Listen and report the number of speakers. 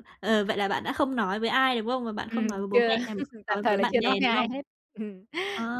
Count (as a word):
two